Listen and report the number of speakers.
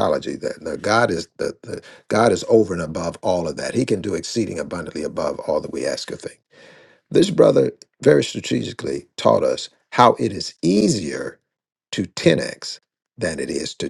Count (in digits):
1